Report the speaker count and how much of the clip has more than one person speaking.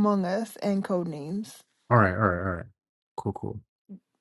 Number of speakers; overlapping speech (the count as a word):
two, no overlap